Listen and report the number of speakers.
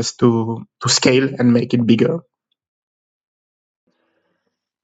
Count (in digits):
1